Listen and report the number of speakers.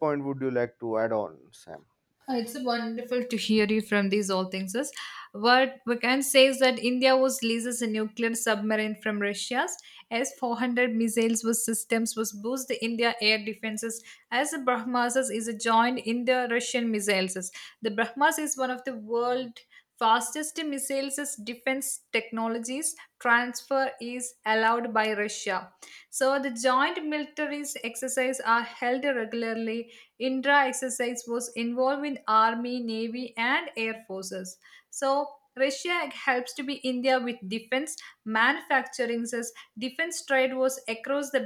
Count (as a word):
two